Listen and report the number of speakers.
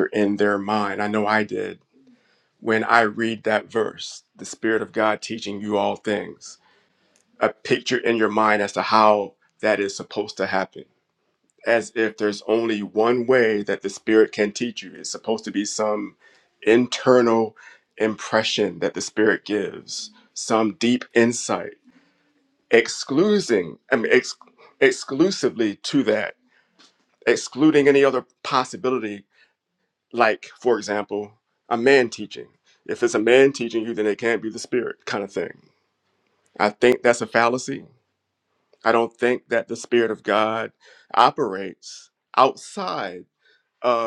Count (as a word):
one